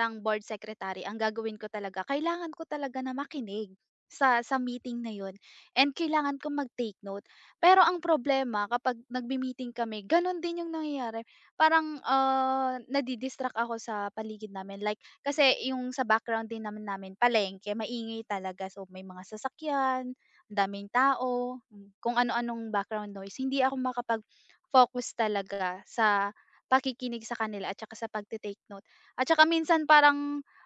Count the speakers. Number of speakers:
1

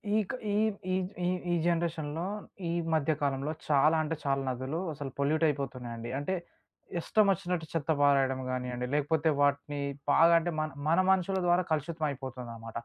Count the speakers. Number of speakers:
1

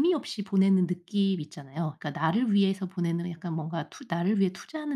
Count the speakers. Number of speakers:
1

